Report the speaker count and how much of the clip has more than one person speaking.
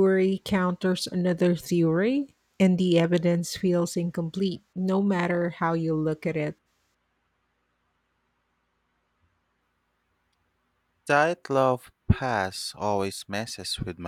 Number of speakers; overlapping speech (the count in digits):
2, no overlap